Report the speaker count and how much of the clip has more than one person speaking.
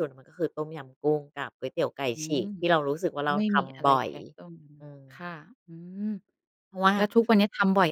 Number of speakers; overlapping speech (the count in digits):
2, about 16%